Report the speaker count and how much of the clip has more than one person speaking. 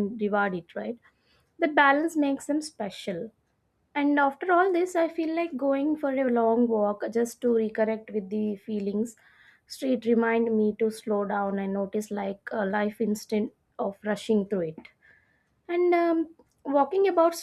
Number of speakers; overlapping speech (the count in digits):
1, no overlap